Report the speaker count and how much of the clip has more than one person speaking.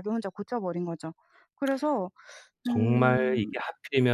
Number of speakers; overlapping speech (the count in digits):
2, about 22%